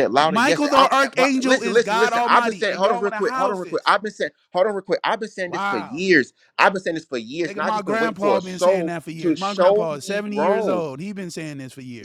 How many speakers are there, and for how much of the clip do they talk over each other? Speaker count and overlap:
two, about 59%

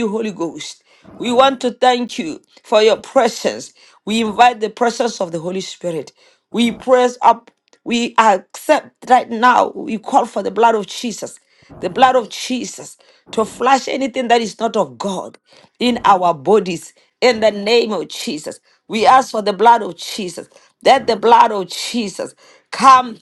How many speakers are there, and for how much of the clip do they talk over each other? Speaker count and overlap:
one, no overlap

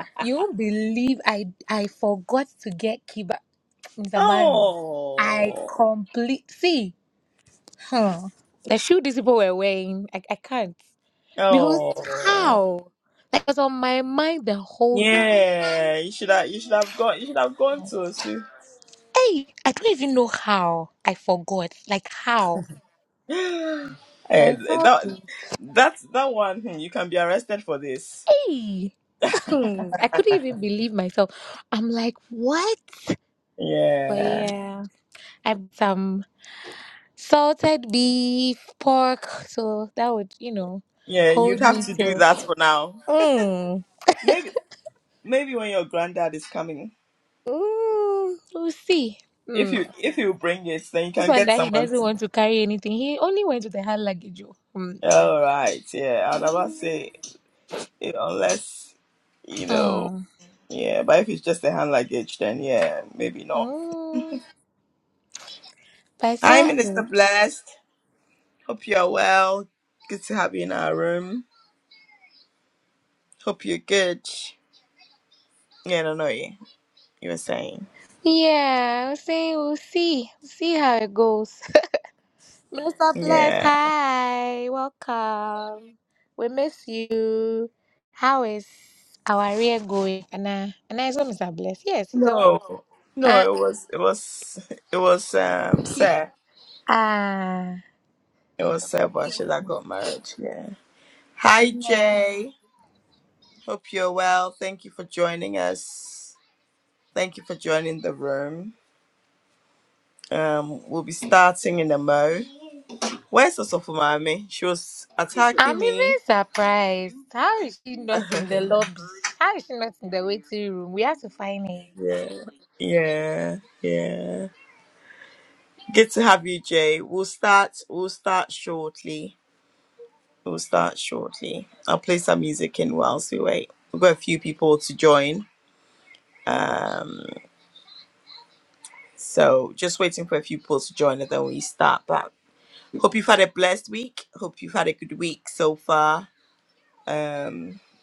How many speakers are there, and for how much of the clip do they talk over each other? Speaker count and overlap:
two, about 6%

